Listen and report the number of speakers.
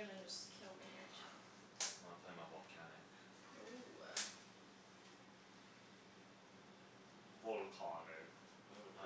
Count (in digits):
3